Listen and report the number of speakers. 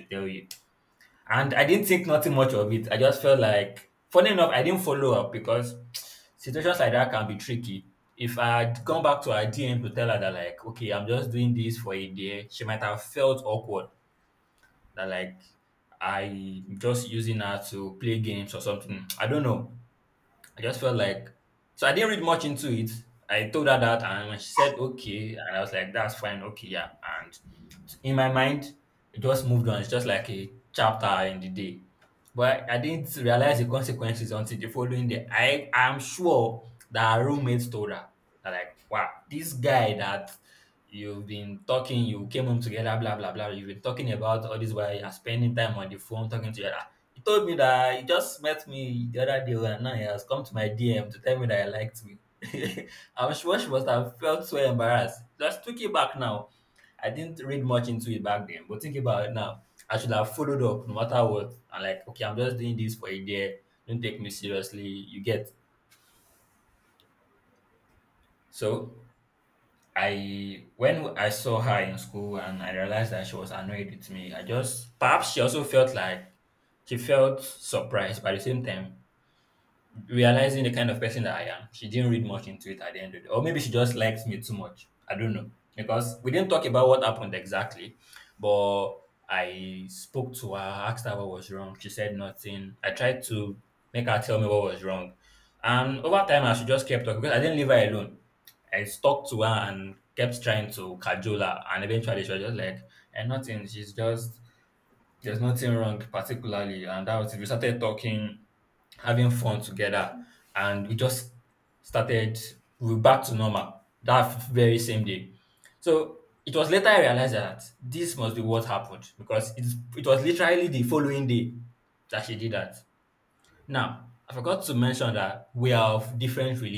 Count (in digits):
1